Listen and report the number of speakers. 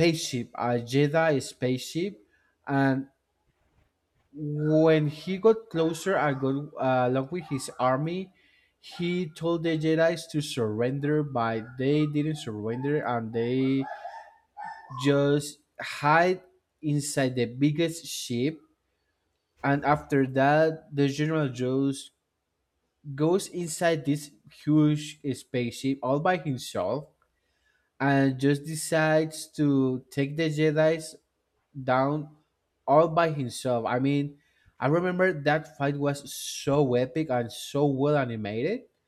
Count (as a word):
one